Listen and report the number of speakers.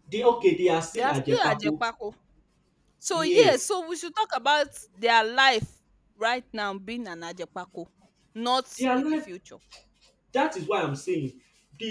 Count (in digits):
2